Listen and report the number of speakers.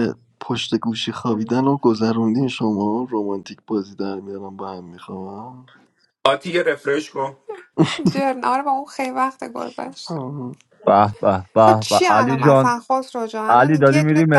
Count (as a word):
four